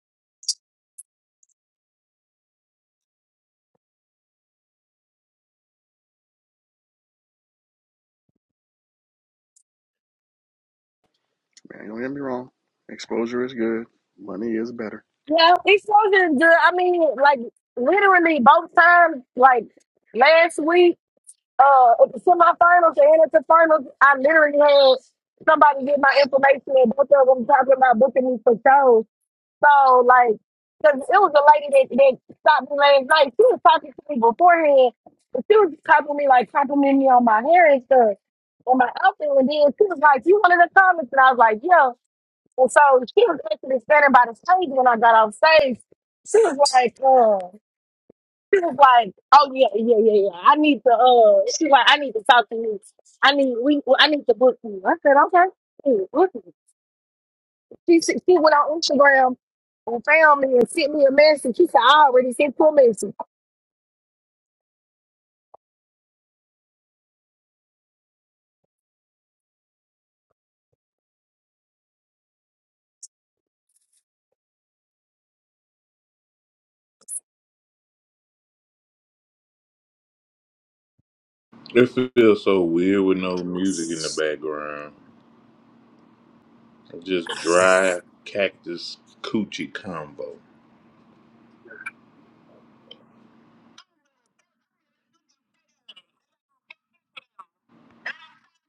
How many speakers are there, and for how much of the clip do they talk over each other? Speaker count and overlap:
three, no overlap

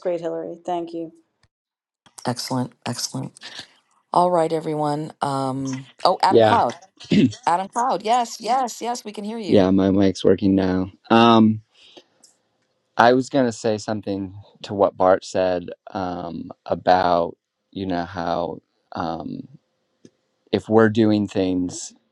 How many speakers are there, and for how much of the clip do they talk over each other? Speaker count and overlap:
three, about 2%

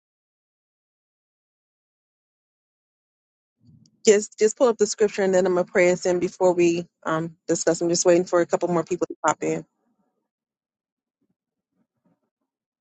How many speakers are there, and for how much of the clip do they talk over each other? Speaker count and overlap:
one, no overlap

